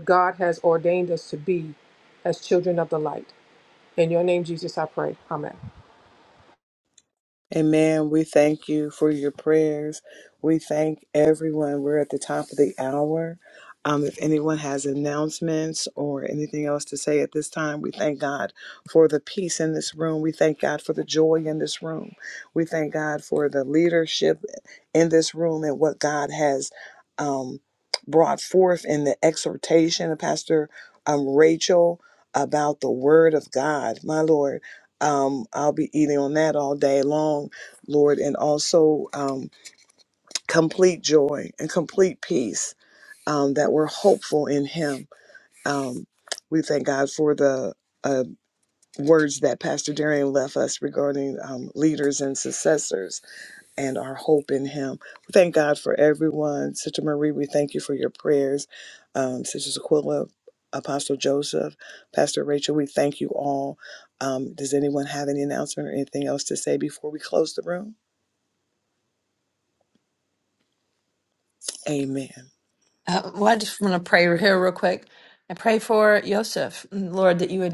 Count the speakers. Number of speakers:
three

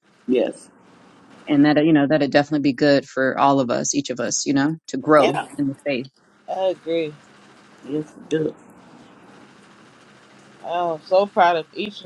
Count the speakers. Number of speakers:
three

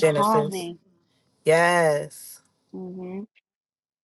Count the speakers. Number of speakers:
two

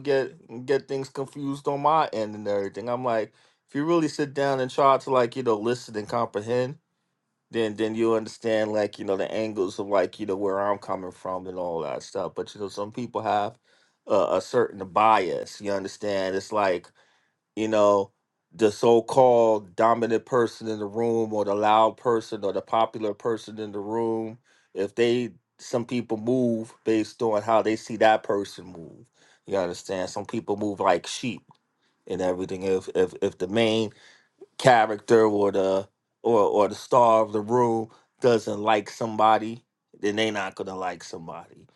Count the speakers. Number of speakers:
one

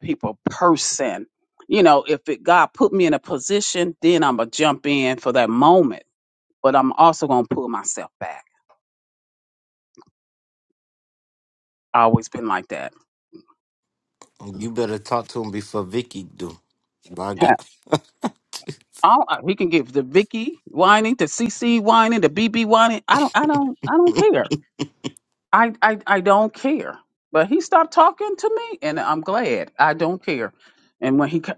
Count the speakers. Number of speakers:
two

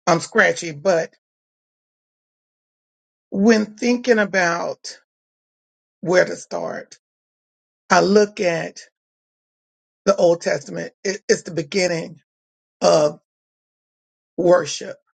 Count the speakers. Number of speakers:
one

